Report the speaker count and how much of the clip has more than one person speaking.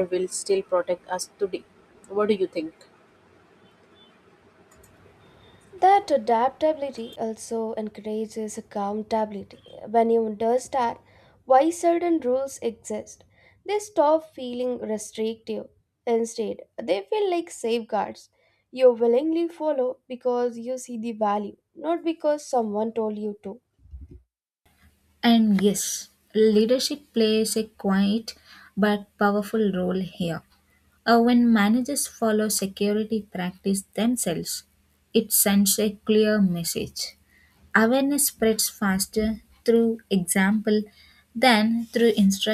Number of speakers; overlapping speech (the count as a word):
three, no overlap